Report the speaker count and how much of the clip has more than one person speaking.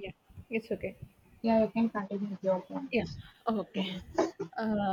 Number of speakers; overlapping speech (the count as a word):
two, no overlap